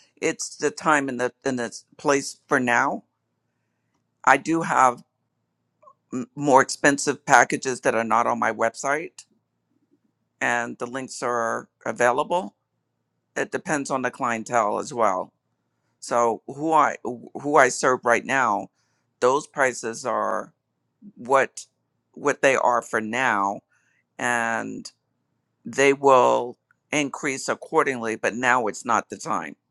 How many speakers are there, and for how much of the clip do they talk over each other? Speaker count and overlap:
1, no overlap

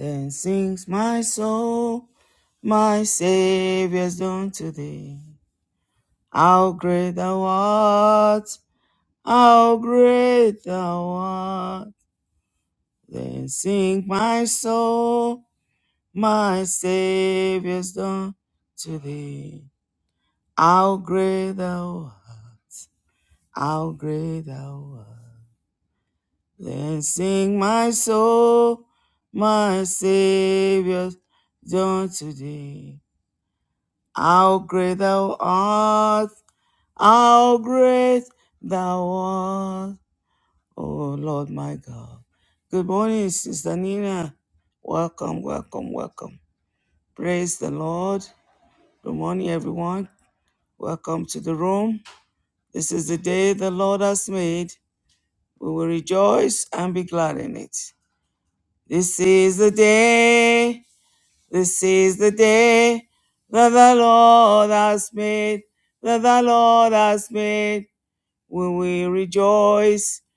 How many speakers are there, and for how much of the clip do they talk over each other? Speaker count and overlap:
1, no overlap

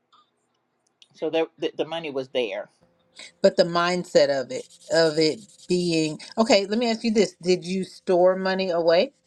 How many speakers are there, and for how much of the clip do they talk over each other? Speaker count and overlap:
2, no overlap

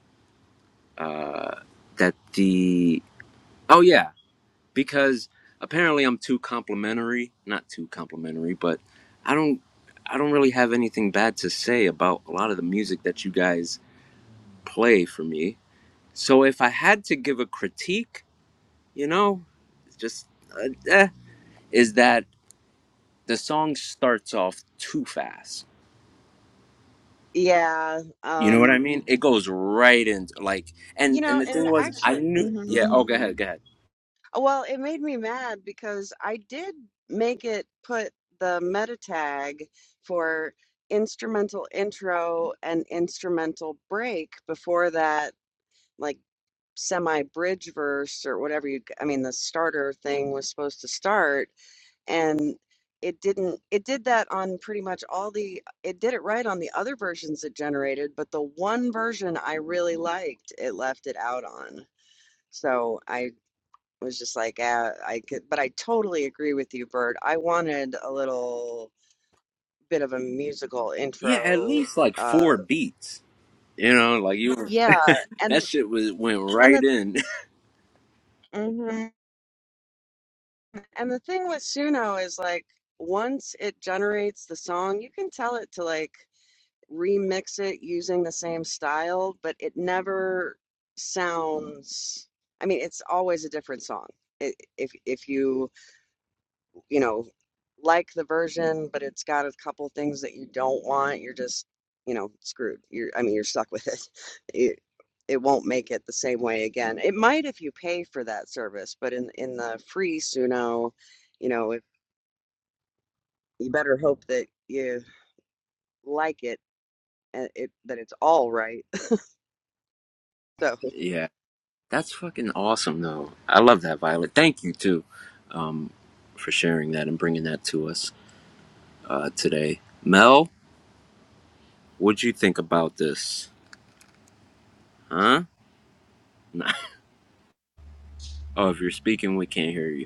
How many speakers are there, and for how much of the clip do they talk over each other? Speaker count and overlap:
2, about 3%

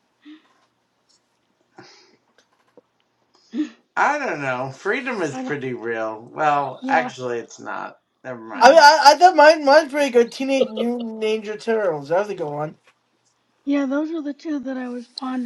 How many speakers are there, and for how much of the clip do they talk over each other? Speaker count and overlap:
3, about 5%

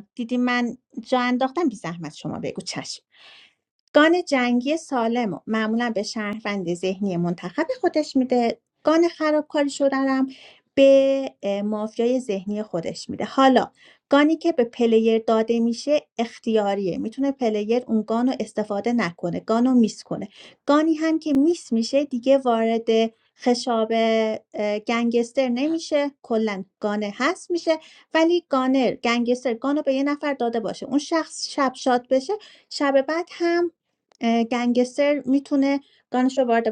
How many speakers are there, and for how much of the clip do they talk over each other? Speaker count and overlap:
1, no overlap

